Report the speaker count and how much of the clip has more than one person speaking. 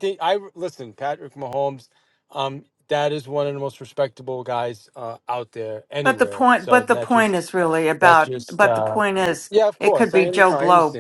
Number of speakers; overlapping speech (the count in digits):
2, about 31%